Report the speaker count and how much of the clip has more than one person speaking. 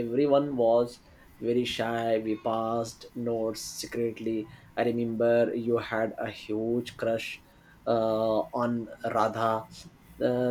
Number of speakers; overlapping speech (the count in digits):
1, no overlap